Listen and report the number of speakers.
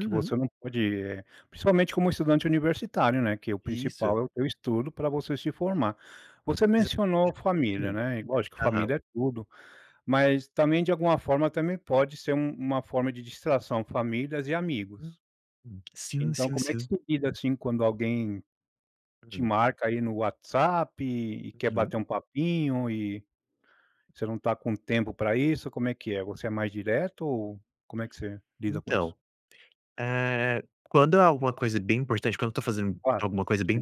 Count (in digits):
2